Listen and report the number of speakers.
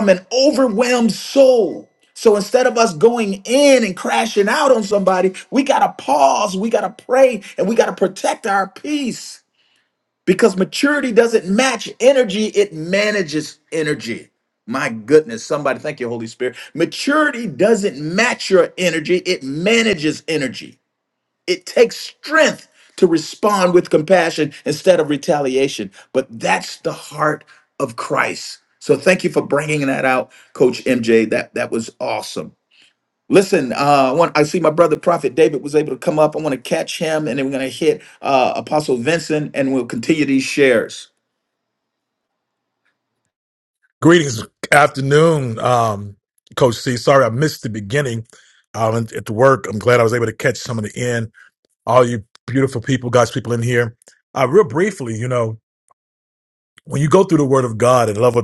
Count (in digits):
2